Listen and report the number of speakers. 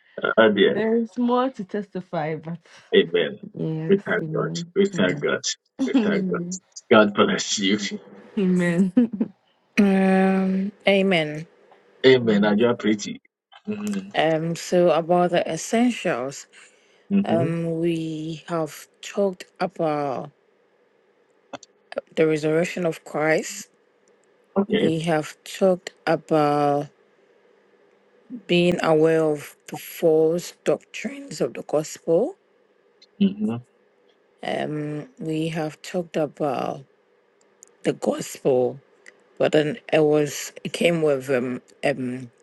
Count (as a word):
three